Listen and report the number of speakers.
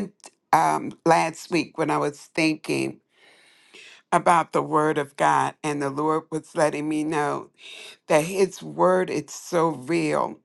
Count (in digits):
1